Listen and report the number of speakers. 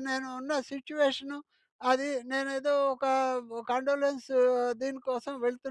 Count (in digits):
1